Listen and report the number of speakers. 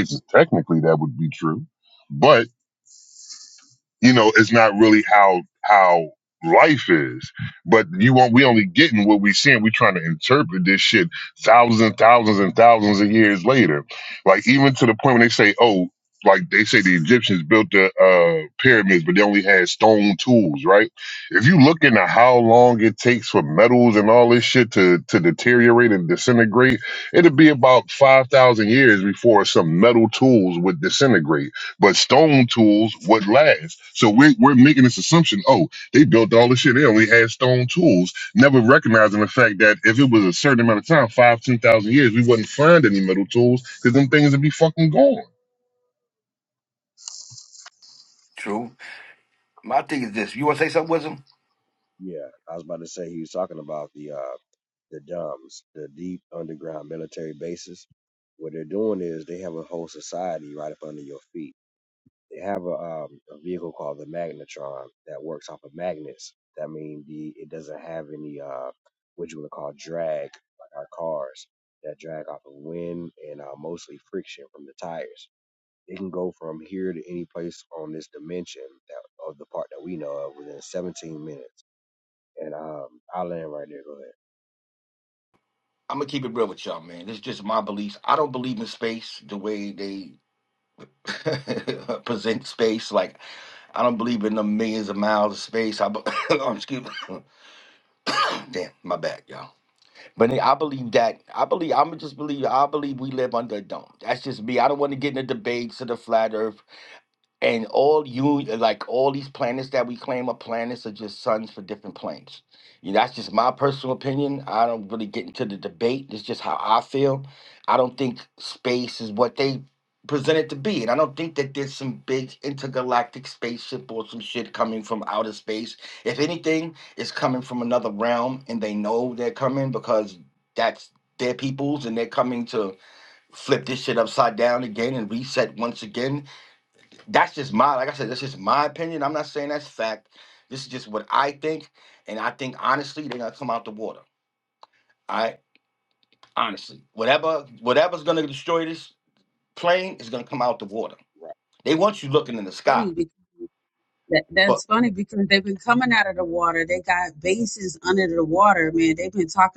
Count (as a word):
four